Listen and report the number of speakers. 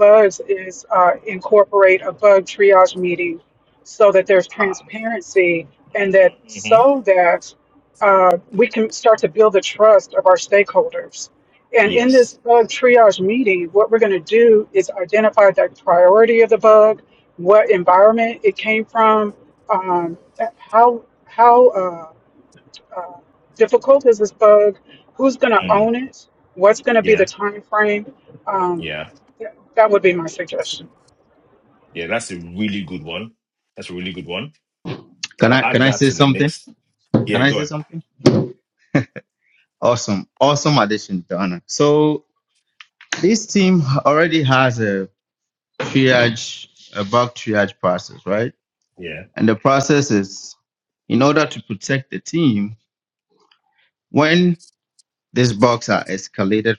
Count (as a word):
three